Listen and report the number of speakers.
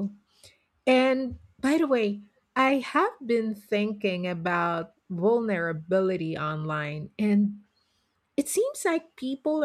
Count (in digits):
1